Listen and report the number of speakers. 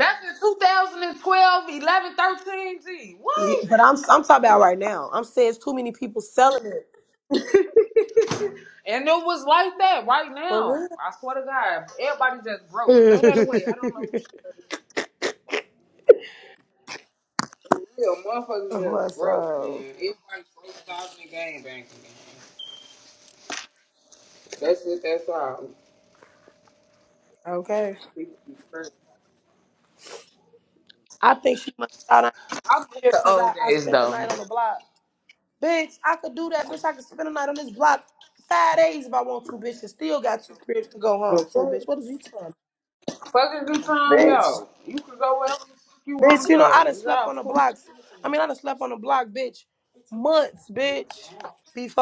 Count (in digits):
2